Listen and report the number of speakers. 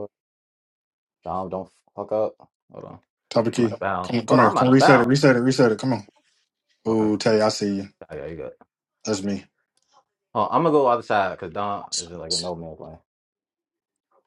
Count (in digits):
2